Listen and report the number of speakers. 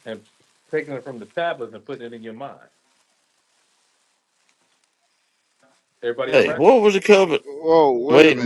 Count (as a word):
three